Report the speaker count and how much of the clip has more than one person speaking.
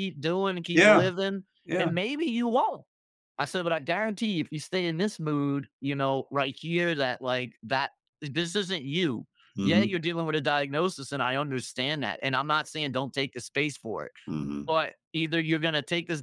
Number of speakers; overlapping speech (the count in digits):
2, about 5%